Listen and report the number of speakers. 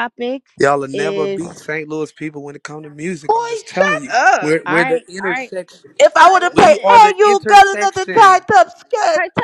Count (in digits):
3